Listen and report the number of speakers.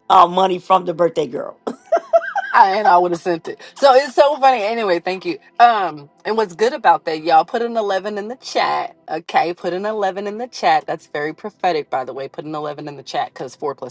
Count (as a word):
two